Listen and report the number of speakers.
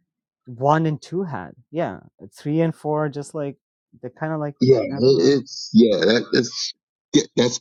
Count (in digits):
2